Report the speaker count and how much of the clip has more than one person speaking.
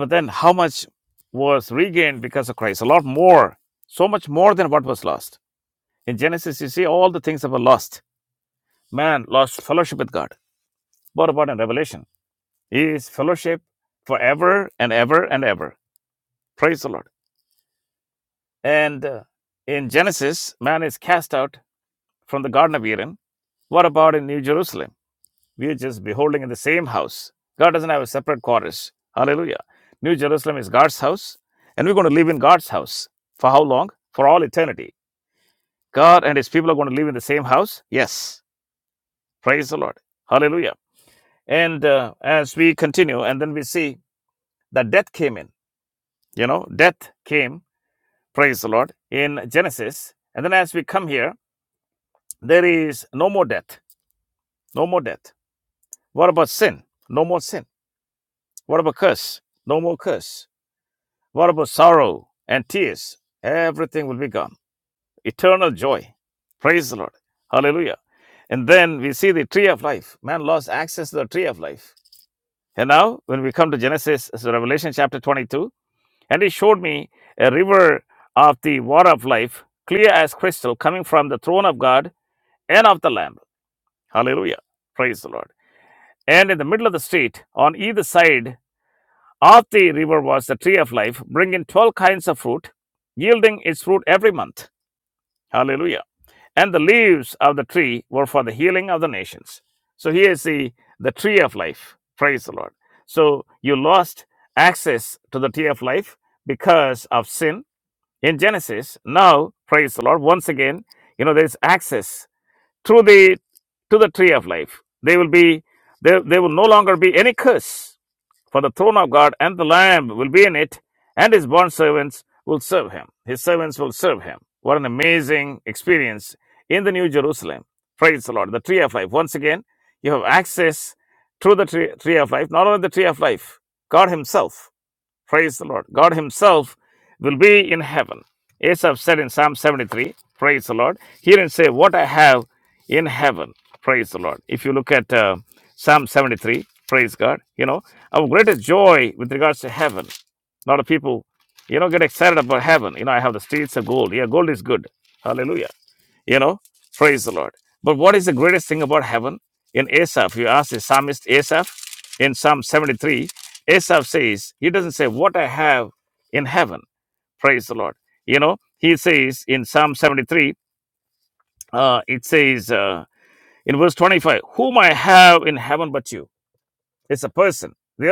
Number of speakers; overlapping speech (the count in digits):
1, no overlap